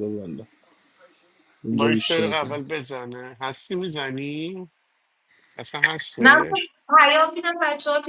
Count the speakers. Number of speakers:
three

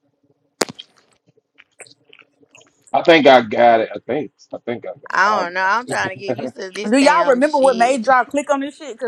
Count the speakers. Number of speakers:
three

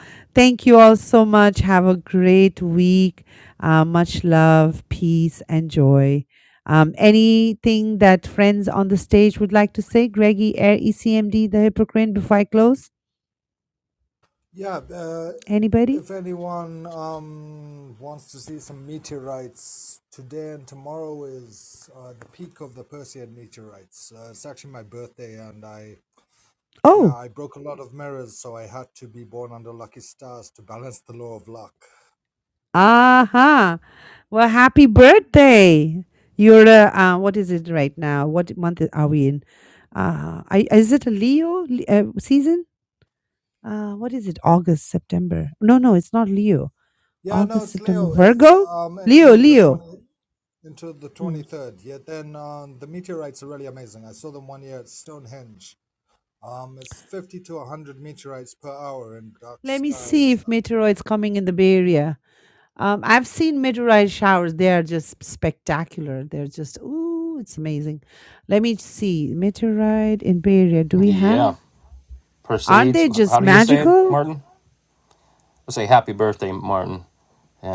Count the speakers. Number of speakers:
three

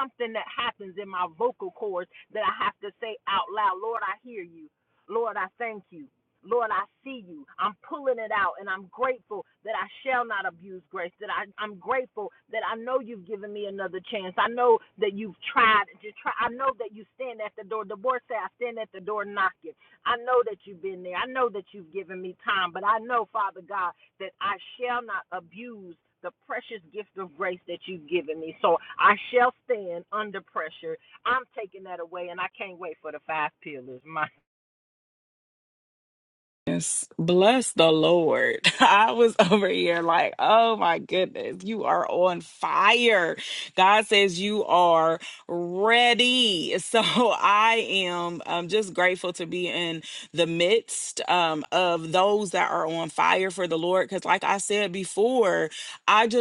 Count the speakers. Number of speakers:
two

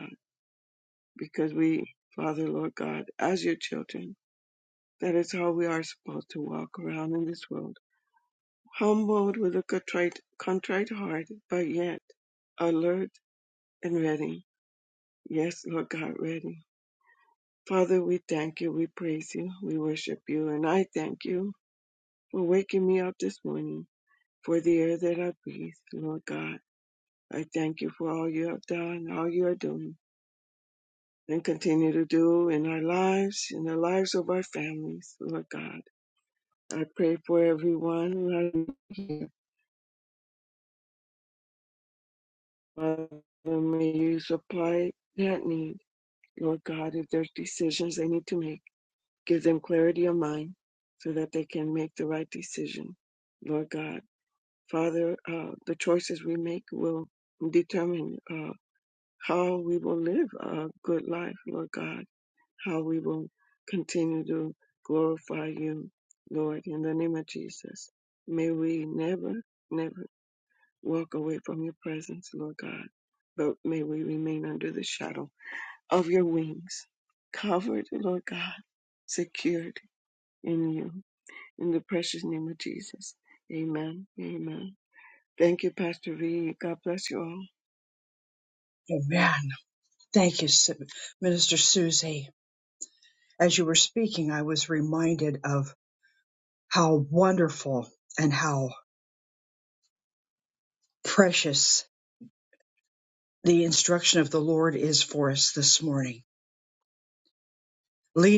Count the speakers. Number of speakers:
two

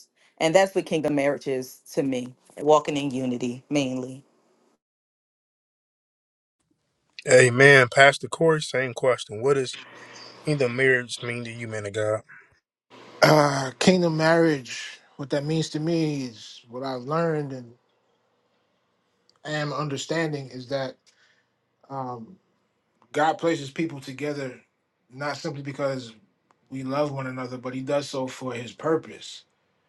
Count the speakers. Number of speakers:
three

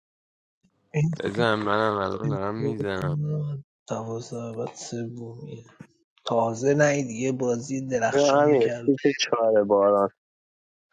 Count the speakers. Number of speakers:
three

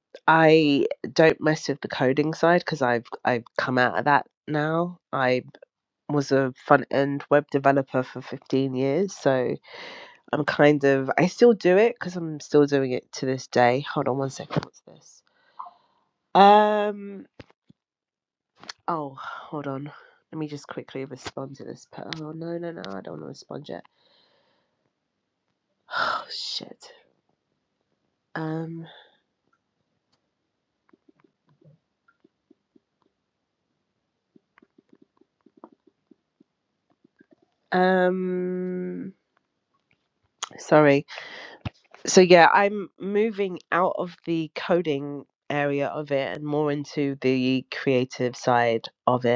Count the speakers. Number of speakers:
one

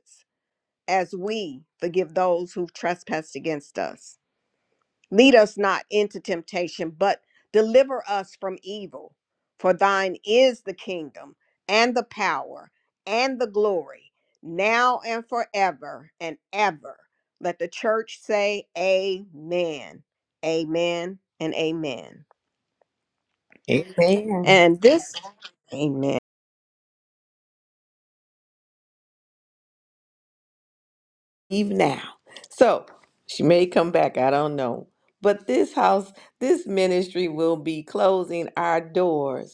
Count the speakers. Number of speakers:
two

